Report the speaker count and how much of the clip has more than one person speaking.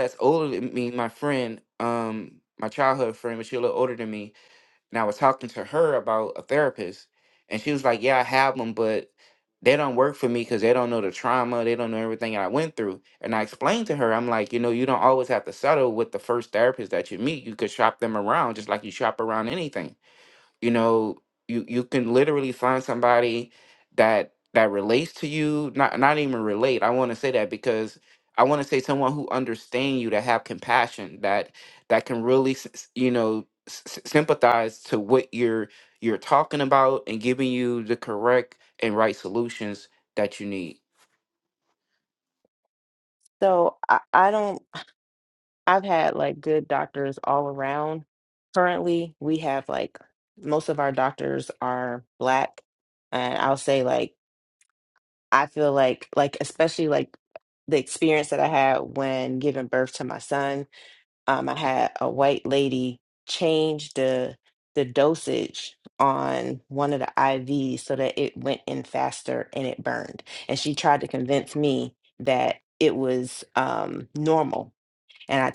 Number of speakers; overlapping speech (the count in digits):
2, no overlap